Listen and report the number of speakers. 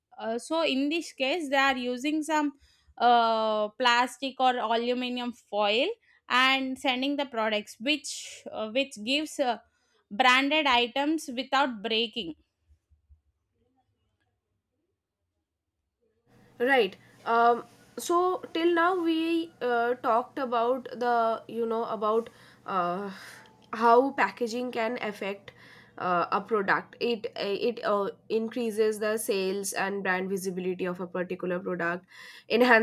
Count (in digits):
2